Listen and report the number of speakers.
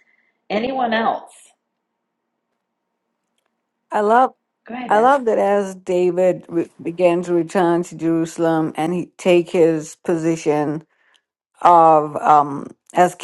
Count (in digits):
2